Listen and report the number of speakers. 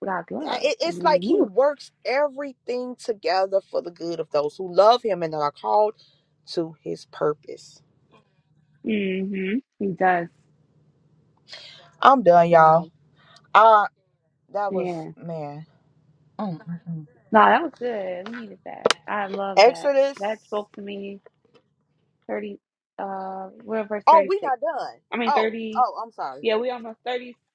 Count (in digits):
2